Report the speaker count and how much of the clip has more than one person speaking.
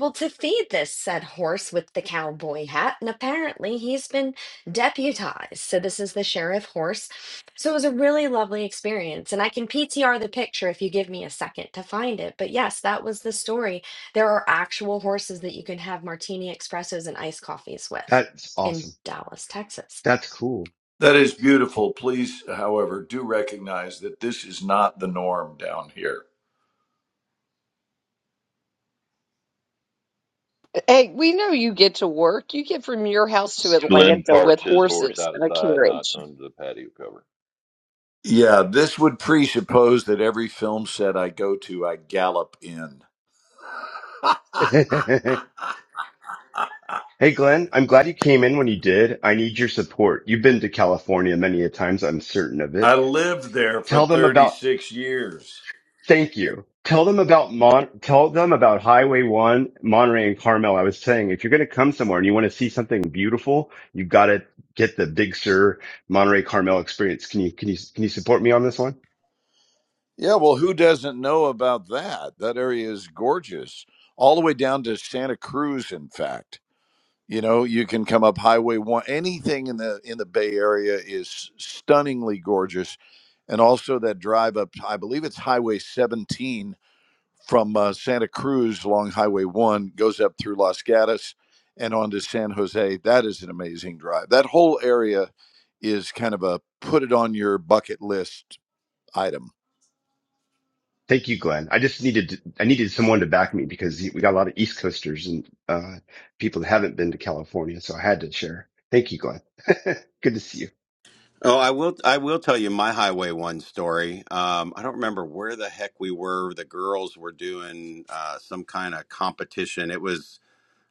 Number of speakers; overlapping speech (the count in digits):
6, about 3%